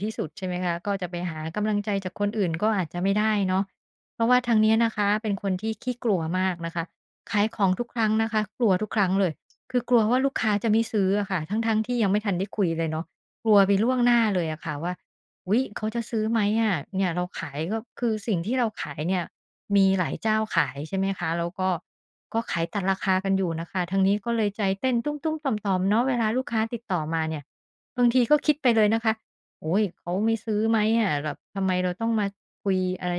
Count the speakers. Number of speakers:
1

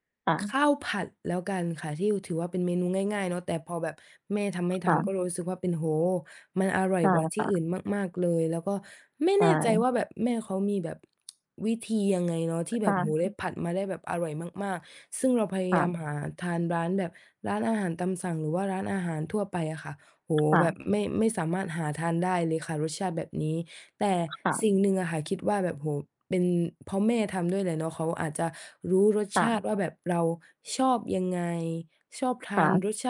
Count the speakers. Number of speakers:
2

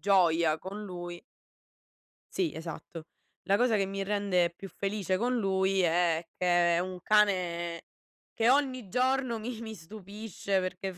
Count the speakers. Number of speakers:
1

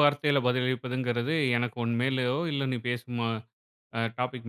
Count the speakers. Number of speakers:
1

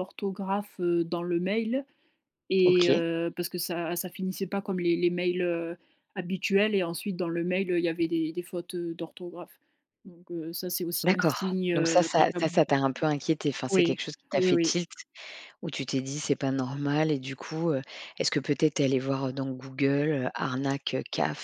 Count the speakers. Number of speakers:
2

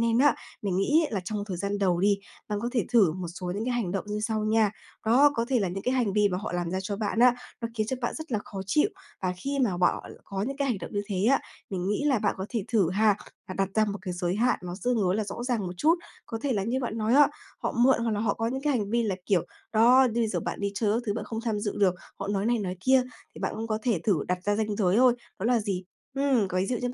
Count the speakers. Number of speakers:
1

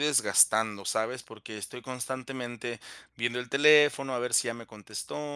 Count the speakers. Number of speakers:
1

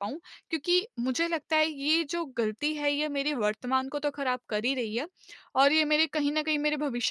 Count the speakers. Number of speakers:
1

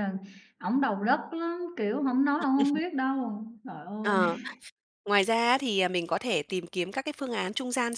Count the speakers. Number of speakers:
2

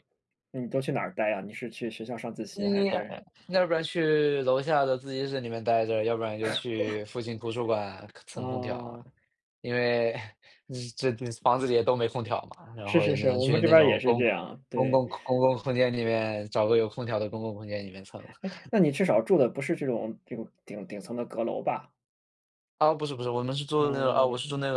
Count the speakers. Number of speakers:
2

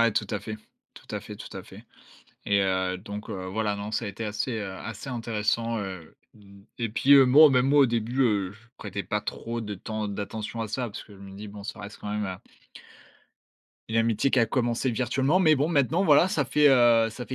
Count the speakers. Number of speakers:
1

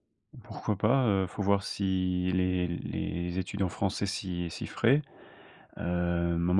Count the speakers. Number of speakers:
1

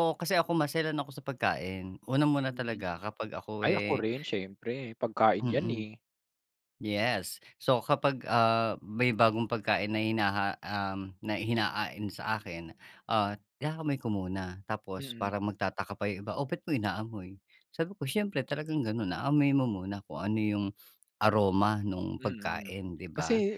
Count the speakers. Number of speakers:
2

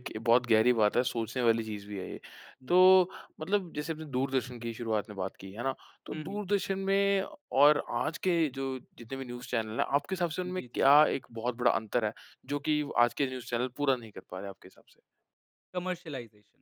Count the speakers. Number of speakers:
2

